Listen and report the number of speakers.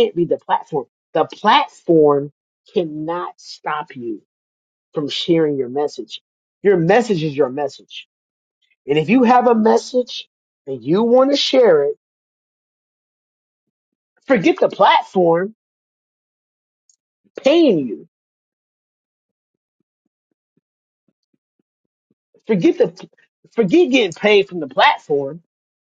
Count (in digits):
1